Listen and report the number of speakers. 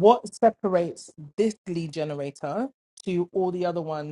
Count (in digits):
1